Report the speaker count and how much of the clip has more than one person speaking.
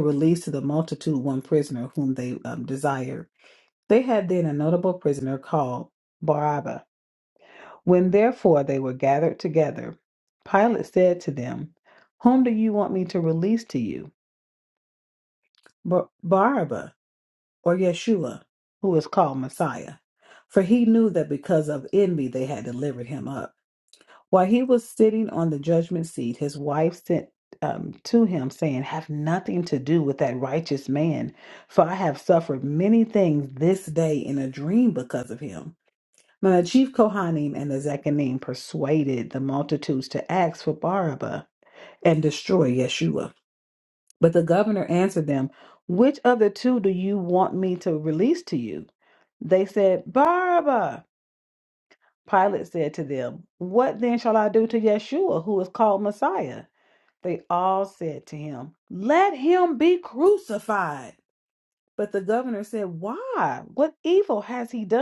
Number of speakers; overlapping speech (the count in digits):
1, no overlap